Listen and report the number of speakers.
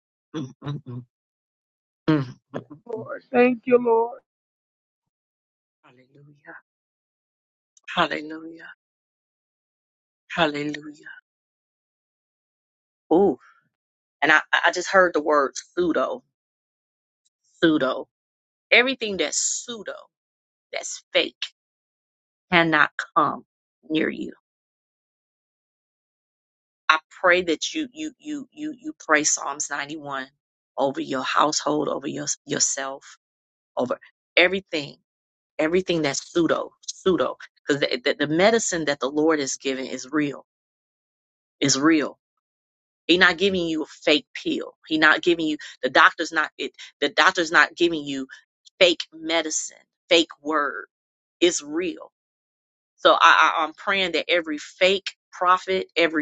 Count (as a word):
two